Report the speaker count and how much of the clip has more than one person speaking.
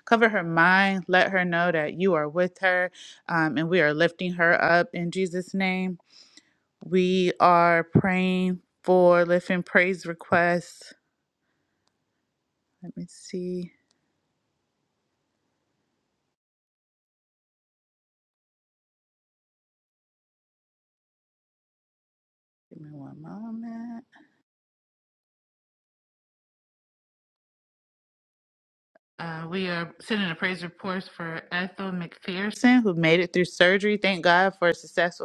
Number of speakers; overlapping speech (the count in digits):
1, no overlap